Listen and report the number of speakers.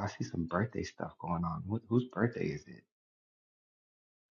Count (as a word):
one